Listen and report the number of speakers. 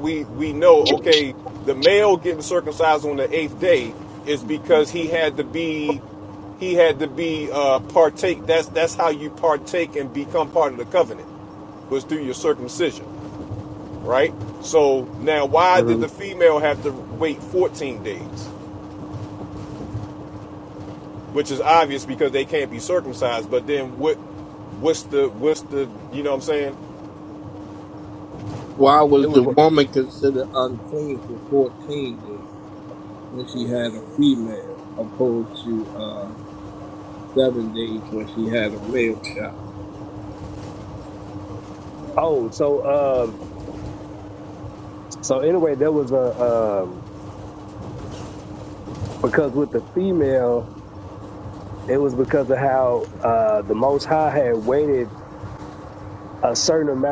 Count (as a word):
three